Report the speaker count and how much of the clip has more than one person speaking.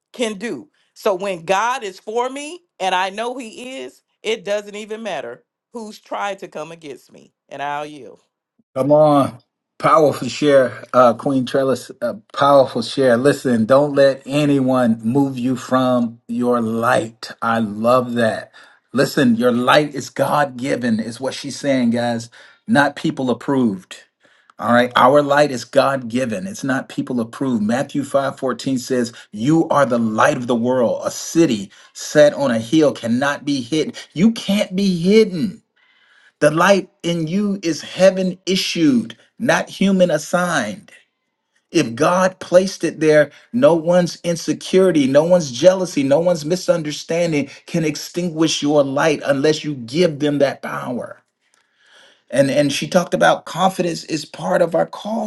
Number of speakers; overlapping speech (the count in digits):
2, no overlap